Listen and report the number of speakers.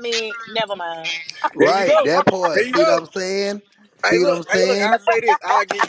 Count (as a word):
three